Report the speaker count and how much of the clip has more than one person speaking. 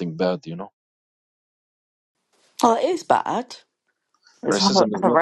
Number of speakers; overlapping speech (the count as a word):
two, about 14%